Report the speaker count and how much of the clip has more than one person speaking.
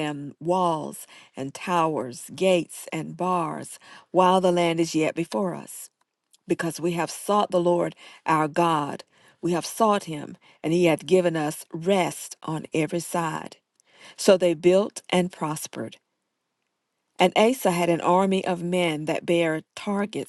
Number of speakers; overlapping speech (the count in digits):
1, no overlap